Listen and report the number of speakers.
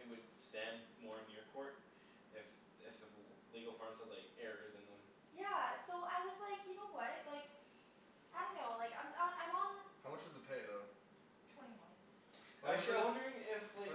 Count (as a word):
three